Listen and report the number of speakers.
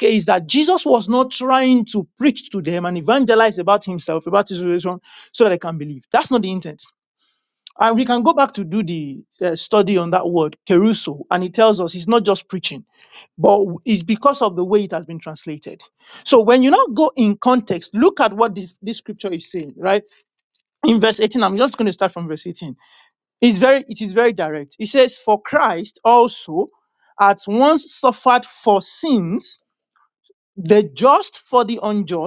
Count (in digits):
1